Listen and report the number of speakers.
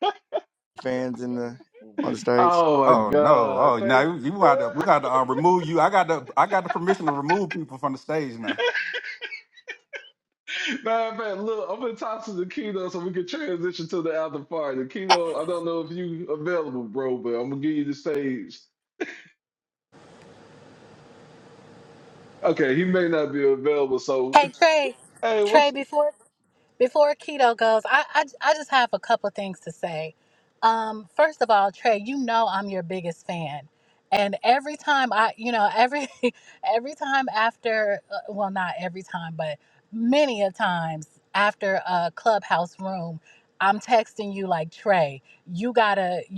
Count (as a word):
four